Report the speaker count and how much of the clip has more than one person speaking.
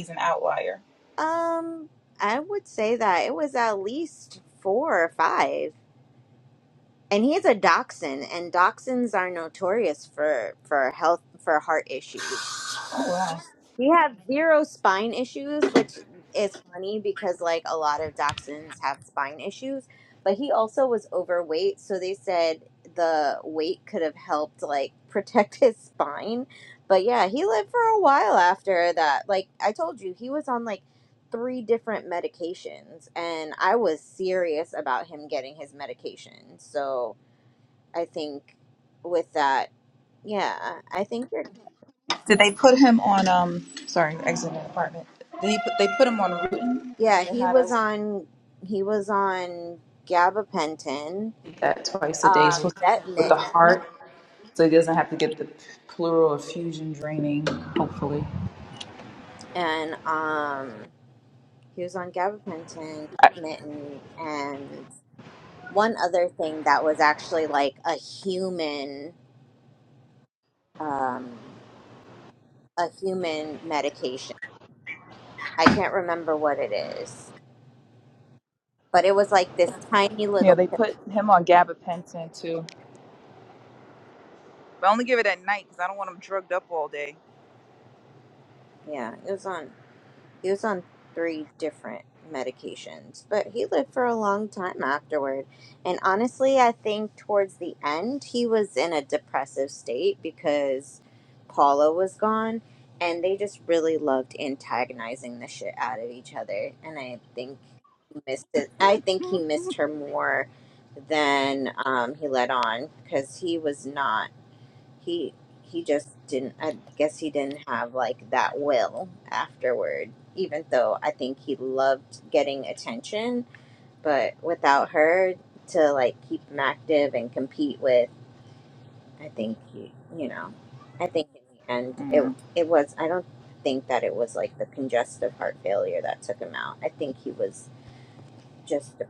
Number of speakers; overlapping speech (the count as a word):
two, about 2%